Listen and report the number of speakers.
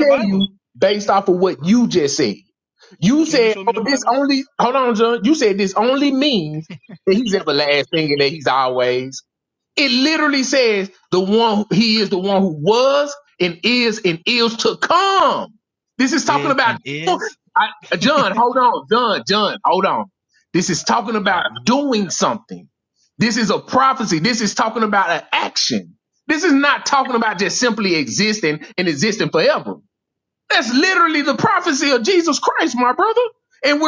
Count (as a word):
two